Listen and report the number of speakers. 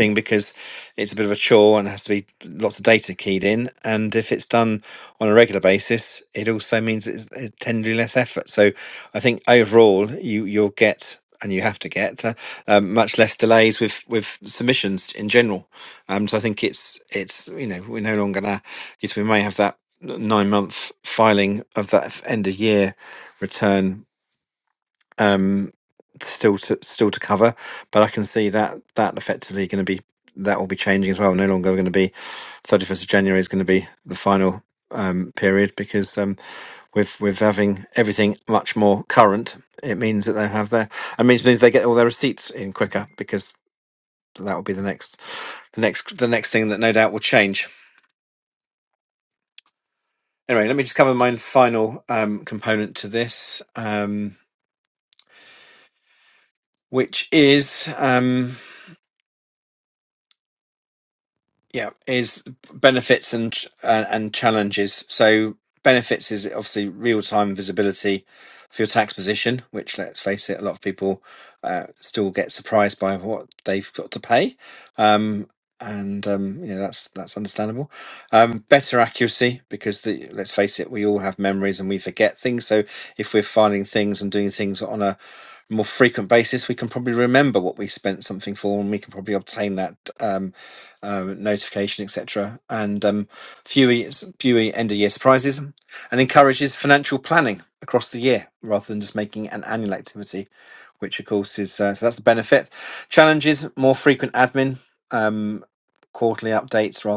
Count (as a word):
one